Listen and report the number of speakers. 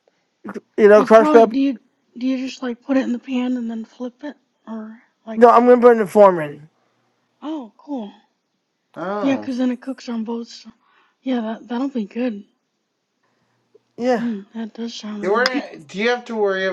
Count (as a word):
three